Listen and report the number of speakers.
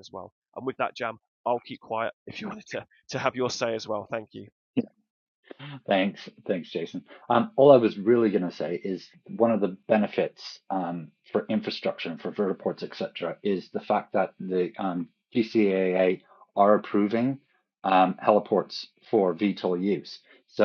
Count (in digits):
2